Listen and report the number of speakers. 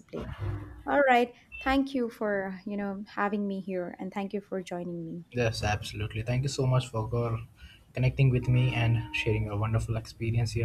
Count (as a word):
two